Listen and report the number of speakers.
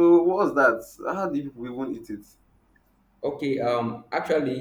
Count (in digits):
2